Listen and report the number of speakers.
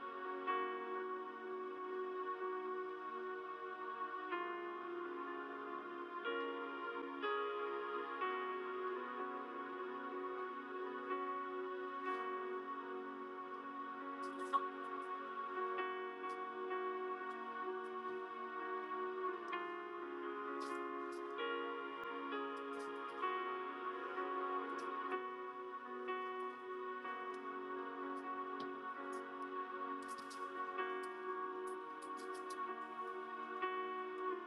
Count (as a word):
zero